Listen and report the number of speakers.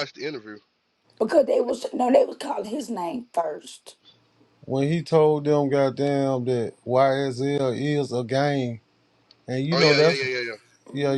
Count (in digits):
3